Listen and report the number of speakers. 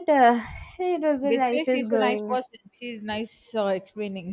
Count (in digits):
2